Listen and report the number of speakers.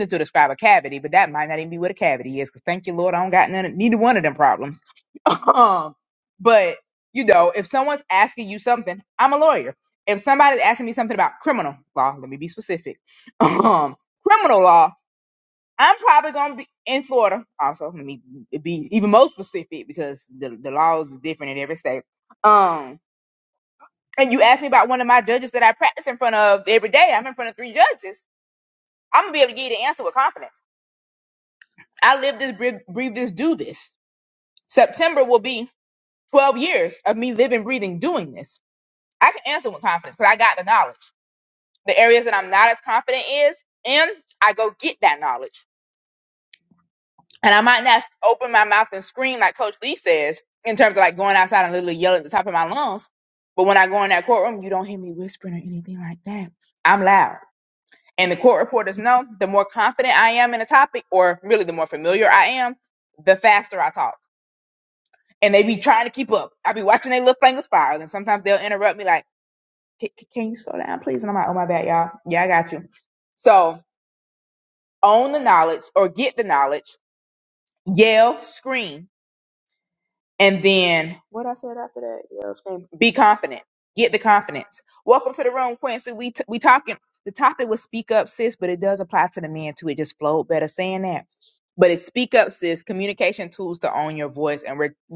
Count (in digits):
1